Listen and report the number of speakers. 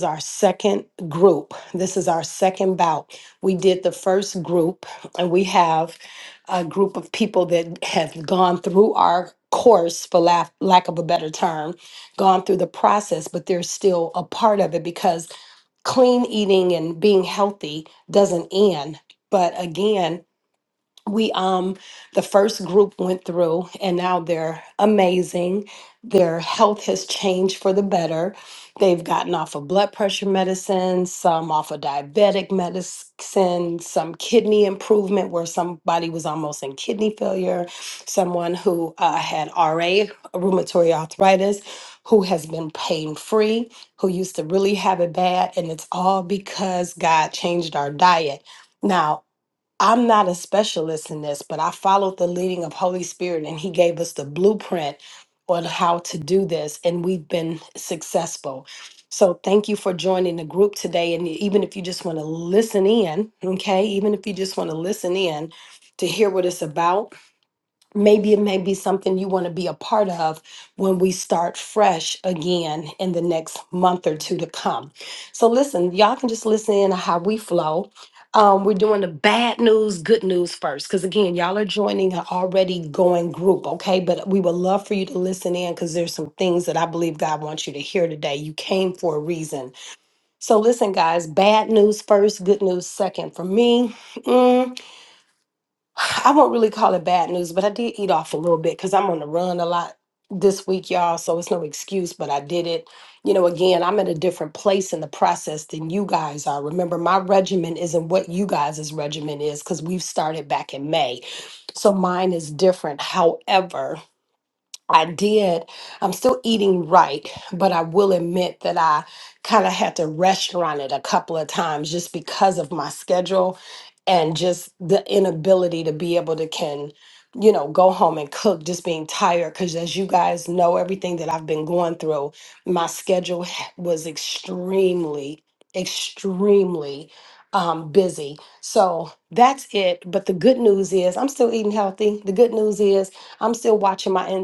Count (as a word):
one